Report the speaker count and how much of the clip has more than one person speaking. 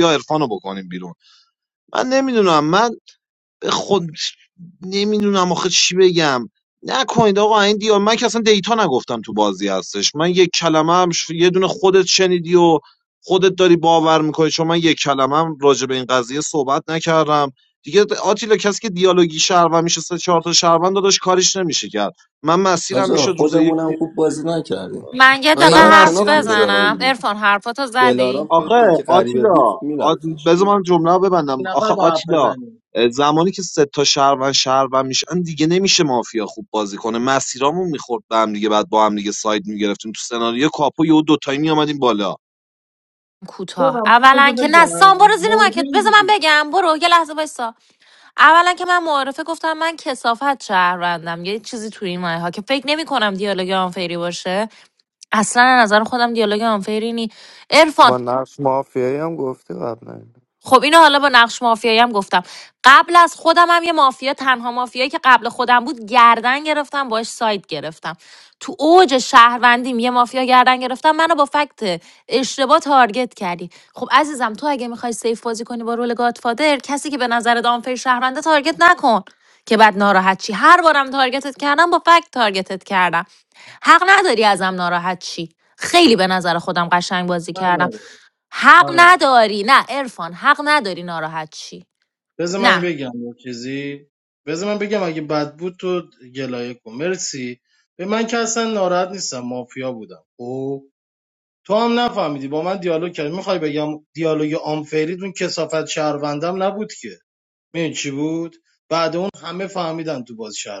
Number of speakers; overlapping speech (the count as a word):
five, about 8%